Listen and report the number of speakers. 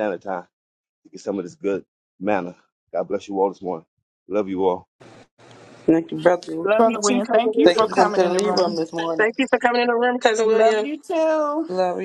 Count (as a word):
four